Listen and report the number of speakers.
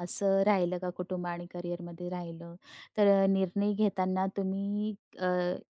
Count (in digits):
1